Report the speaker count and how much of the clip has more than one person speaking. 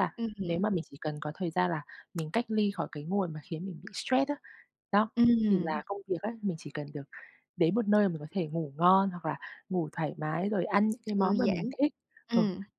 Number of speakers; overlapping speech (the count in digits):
2, about 10%